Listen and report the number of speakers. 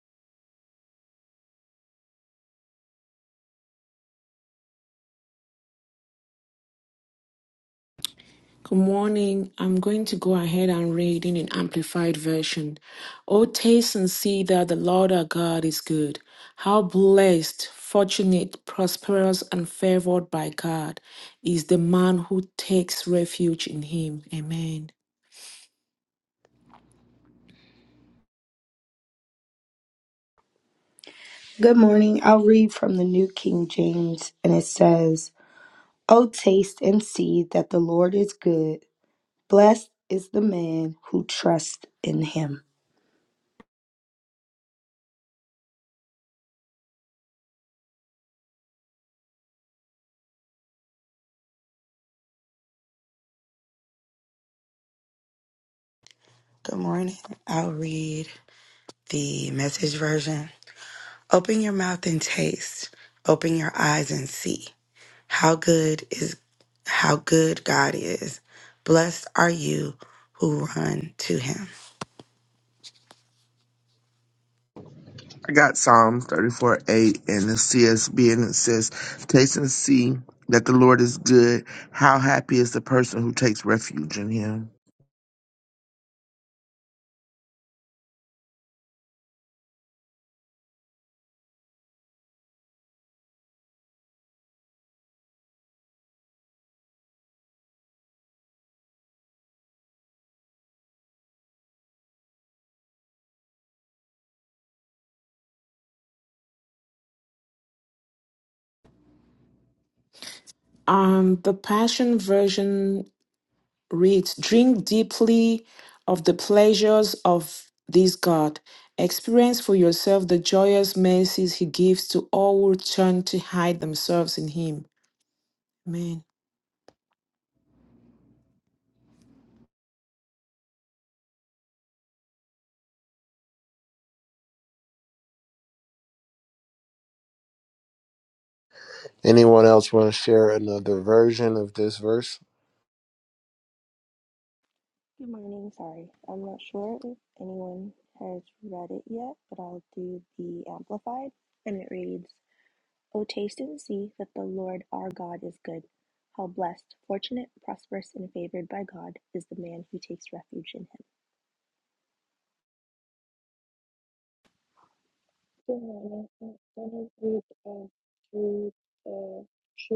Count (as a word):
seven